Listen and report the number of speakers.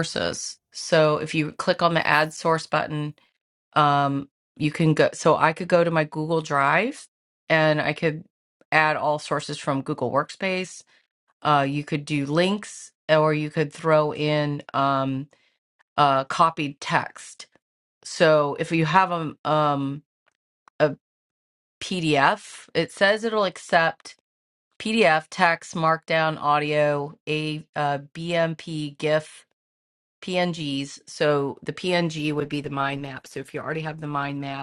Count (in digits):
1